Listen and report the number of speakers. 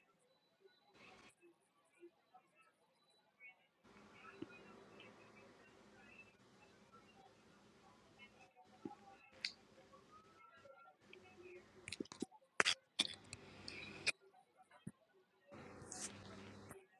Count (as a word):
zero